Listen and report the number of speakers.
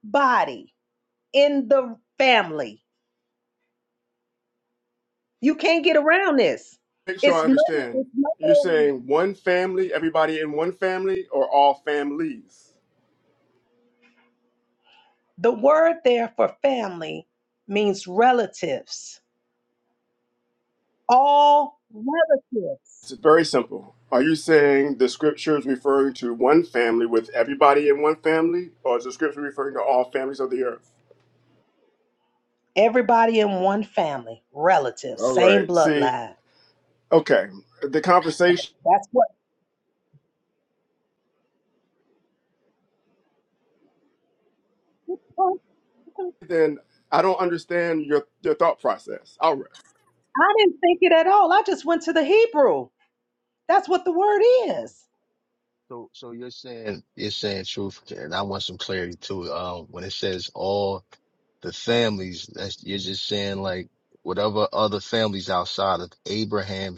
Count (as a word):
three